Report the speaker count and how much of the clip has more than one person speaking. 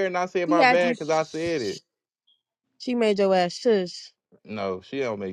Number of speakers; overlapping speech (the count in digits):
2, about 9%